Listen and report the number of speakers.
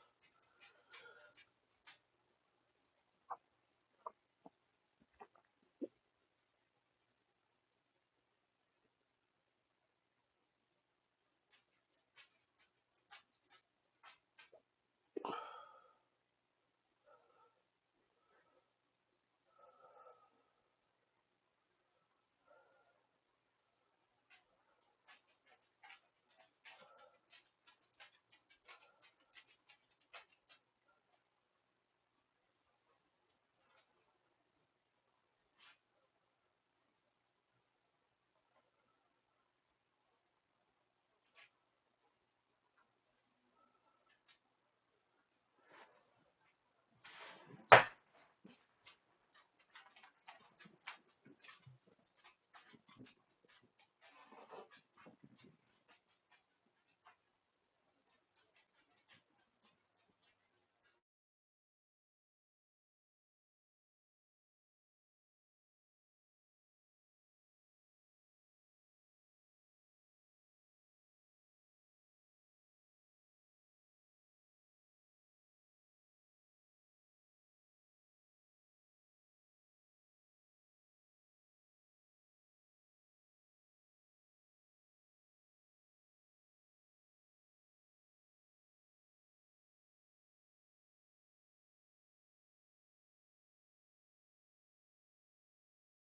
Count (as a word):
zero